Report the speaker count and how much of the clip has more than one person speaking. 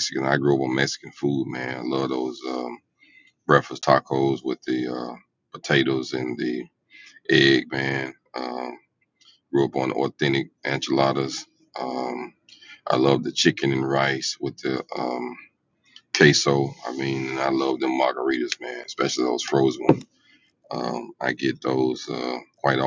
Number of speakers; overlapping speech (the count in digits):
1, no overlap